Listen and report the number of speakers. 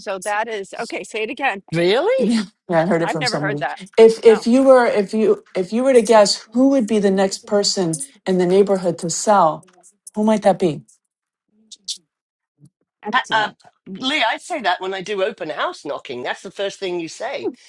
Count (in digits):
3